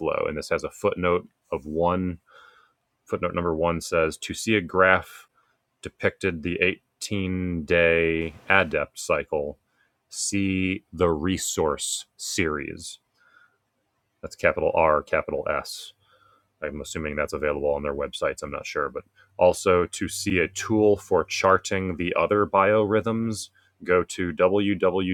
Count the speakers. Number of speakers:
1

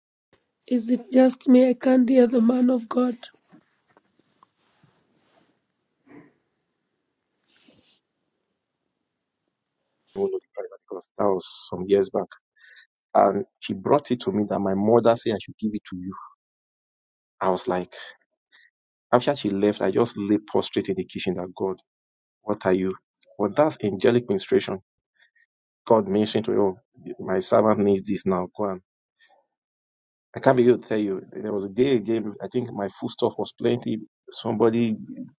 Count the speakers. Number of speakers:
2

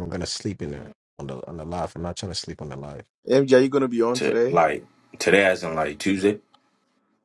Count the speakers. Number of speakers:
3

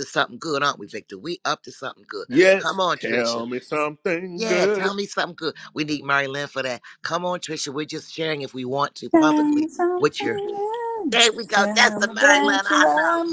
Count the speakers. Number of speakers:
3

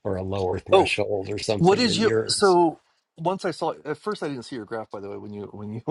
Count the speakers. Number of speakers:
2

